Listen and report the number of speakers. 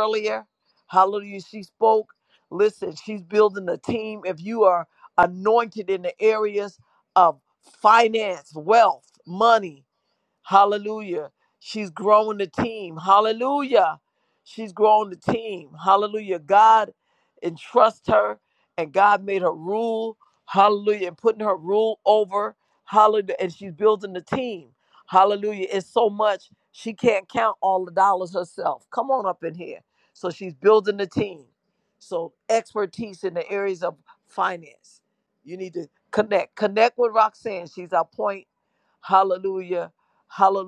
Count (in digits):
1